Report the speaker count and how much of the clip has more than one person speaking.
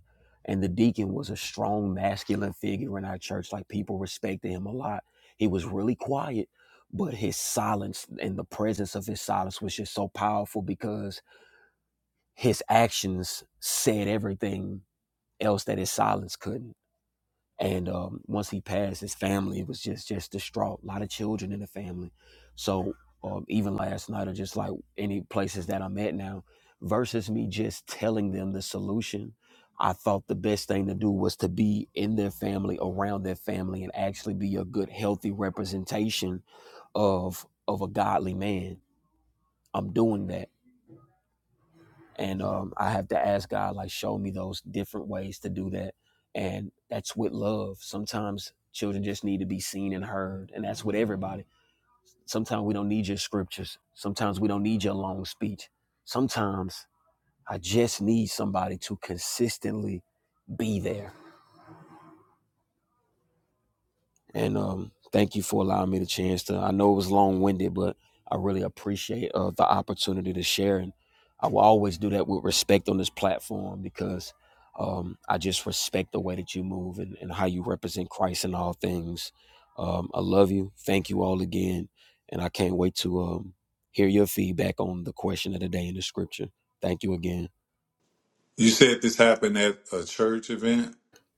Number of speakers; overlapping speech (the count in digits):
2, no overlap